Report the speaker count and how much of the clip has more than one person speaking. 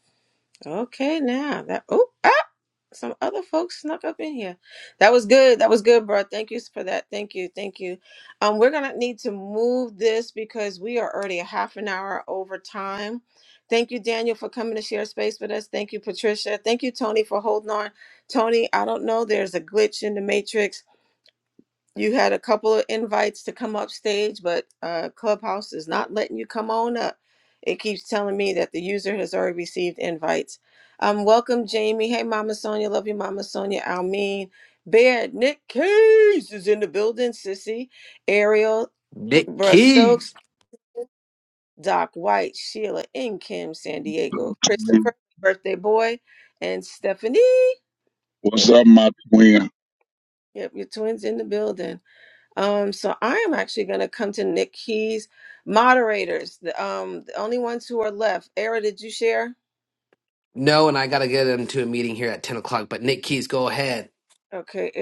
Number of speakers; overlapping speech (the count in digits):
3, about 2%